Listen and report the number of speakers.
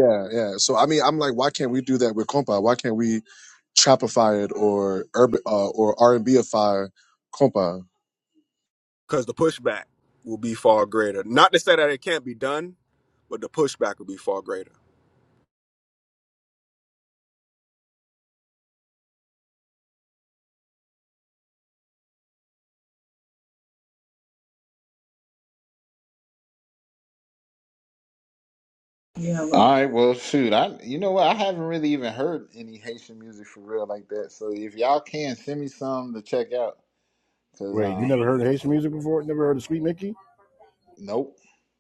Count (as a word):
four